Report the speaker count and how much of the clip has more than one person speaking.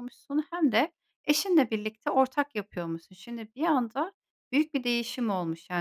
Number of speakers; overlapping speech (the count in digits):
1, no overlap